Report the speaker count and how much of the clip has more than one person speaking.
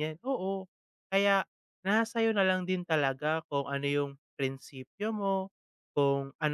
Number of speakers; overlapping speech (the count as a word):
one, no overlap